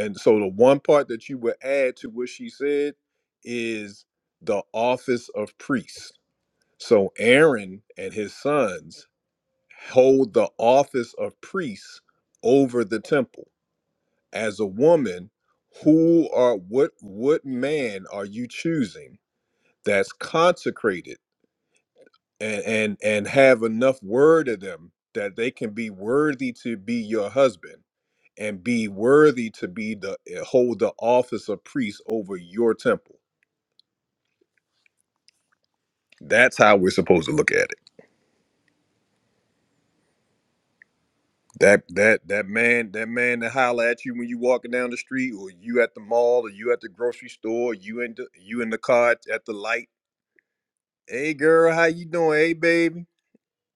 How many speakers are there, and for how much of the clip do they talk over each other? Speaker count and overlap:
1, no overlap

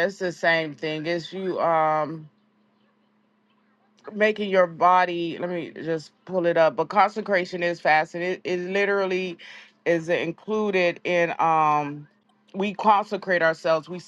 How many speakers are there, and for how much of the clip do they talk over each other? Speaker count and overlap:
1, no overlap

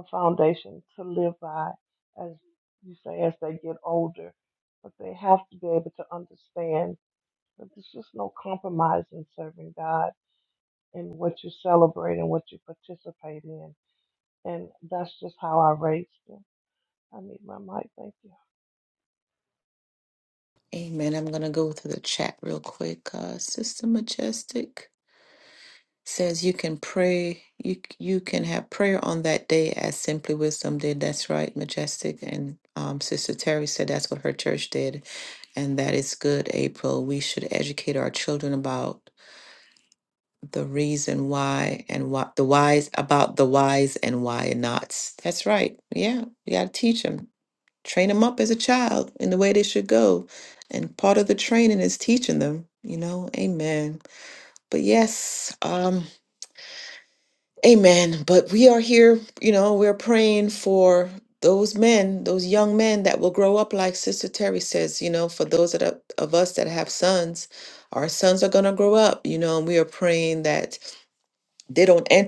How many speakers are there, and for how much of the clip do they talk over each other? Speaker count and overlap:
2, no overlap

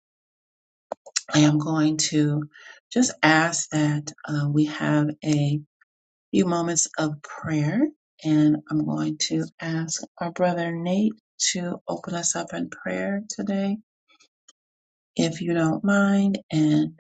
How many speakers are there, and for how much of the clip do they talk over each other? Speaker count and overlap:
1, no overlap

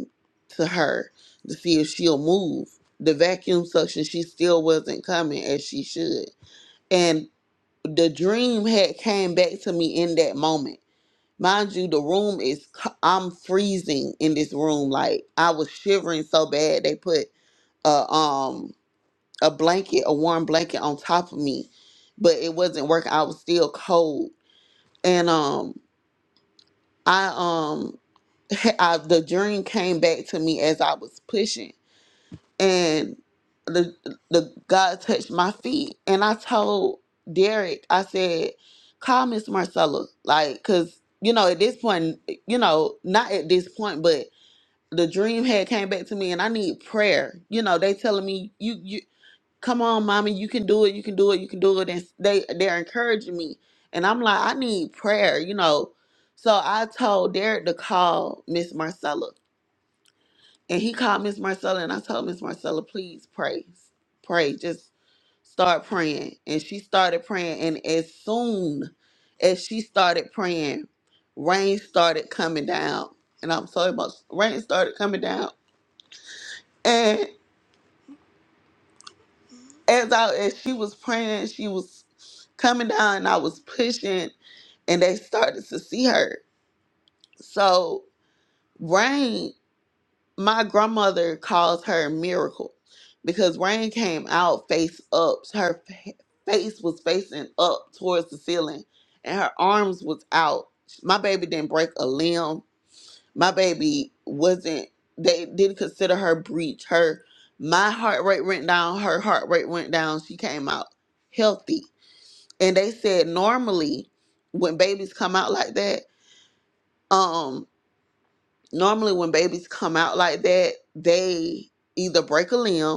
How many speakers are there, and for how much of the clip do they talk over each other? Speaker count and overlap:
1, no overlap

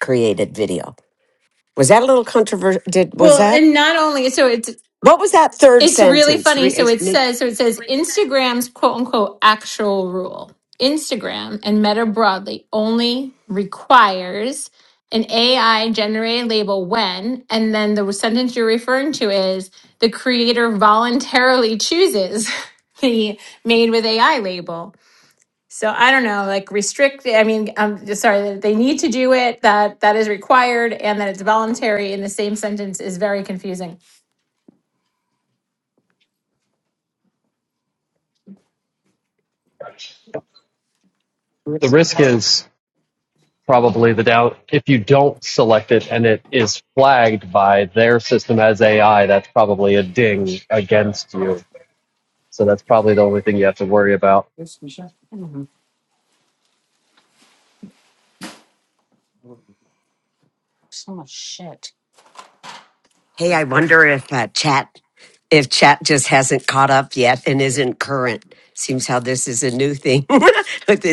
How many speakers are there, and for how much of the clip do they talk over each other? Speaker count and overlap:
4, about 3%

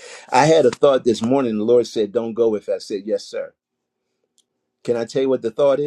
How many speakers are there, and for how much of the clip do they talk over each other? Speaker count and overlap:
1, no overlap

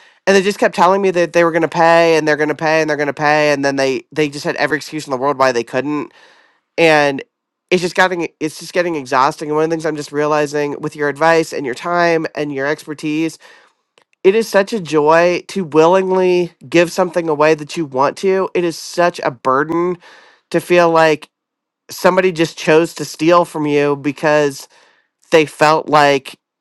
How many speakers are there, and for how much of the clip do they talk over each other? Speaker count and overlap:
1, no overlap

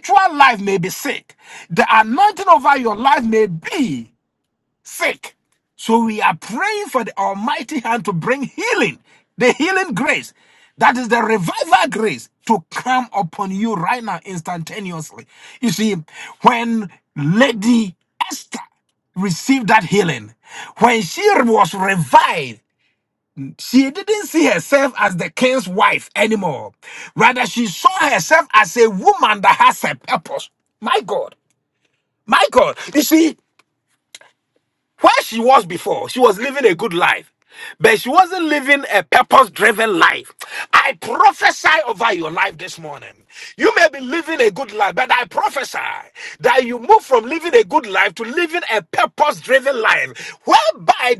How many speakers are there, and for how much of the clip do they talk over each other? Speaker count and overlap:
1, no overlap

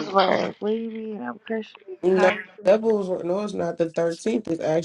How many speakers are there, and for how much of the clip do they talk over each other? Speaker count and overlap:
2, about 6%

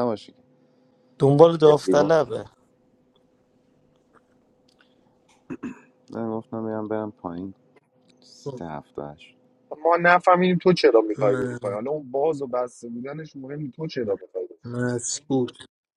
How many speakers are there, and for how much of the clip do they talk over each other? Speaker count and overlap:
4, about 7%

